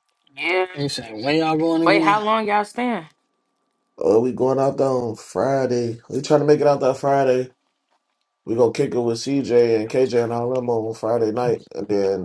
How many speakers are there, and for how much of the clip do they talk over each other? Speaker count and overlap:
three, about 3%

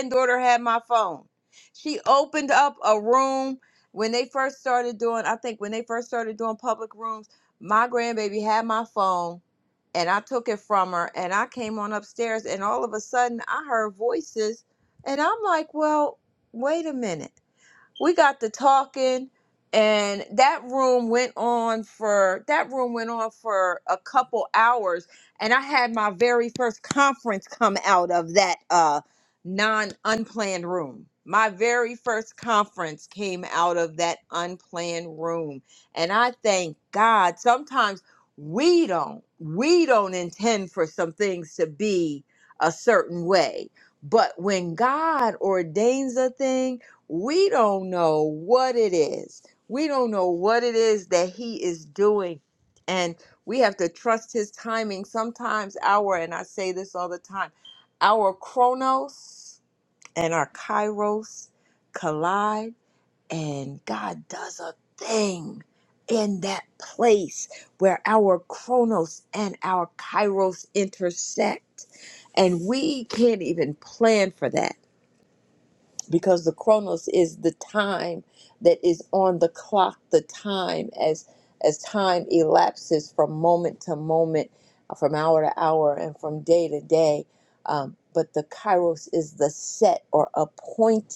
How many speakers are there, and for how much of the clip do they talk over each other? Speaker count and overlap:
one, no overlap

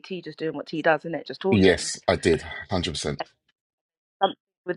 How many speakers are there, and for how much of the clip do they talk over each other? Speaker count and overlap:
two, about 5%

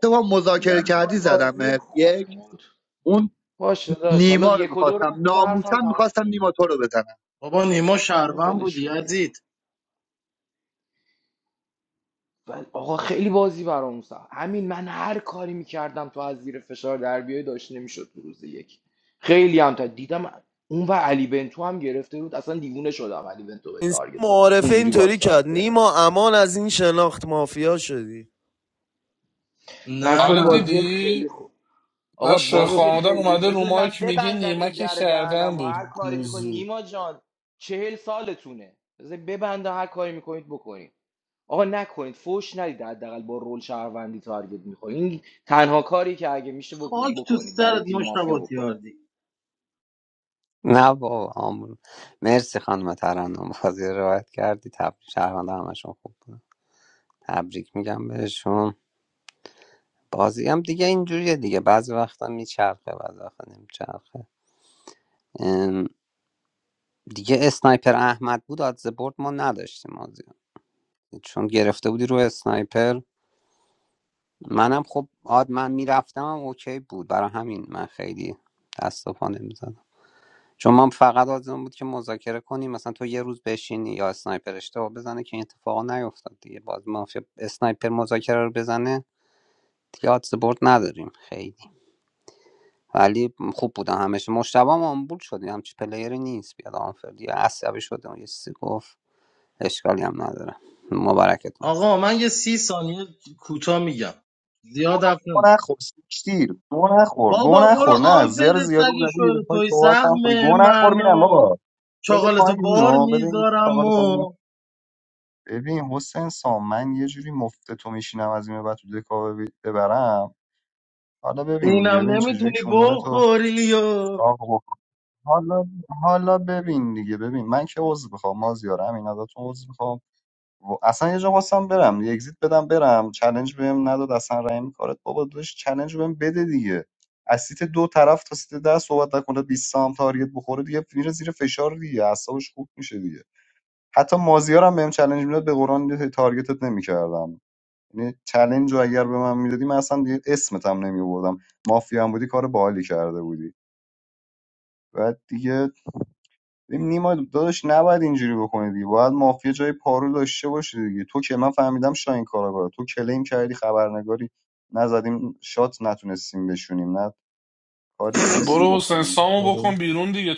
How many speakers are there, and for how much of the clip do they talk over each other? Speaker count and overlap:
seven, about 14%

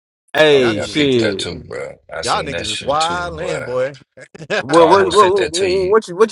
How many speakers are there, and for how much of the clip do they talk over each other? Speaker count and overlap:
three, about 60%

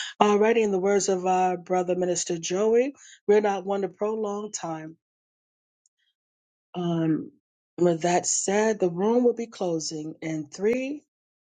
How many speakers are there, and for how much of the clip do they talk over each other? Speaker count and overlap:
one, no overlap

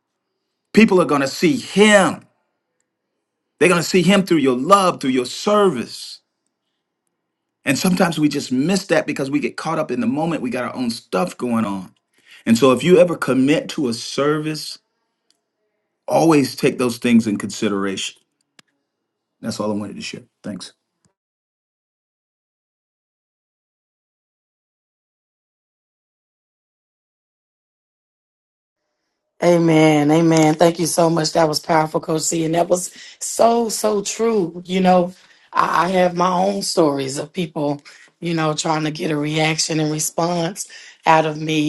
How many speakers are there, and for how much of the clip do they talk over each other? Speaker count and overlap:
two, no overlap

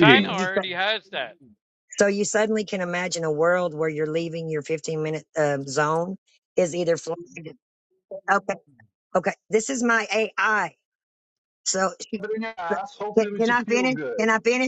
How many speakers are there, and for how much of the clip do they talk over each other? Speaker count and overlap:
three, about 11%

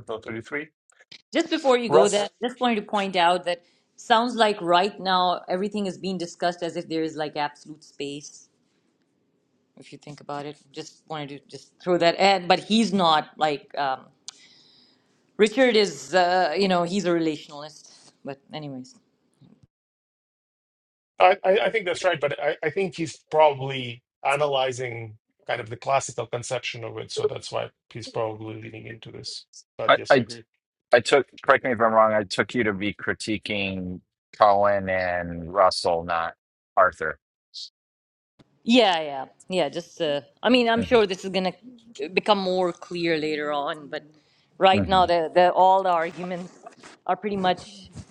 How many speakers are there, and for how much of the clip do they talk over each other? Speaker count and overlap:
three, about 2%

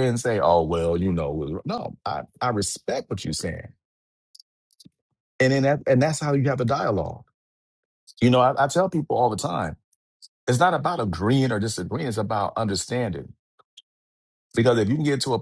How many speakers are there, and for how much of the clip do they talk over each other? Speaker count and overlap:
one, no overlap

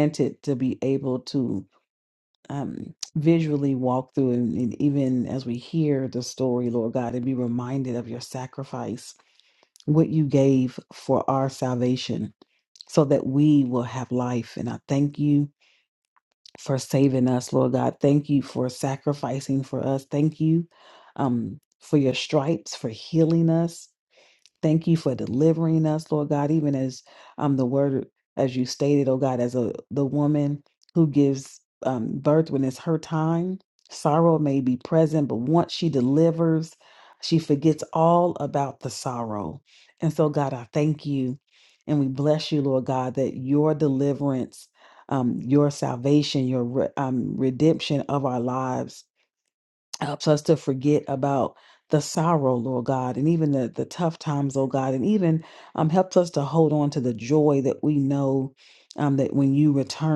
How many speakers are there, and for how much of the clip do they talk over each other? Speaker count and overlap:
one, no overlap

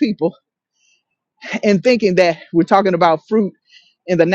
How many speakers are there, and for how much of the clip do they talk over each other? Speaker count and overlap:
one, no overlap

